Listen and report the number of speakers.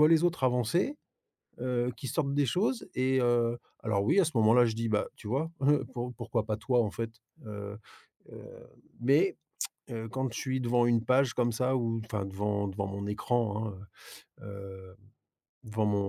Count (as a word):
one